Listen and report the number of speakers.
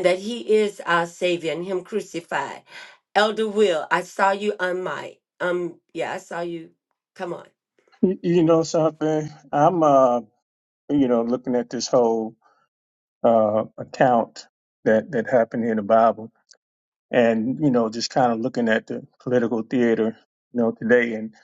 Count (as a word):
two